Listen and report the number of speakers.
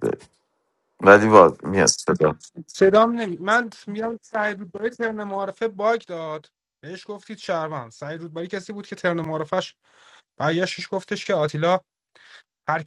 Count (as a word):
two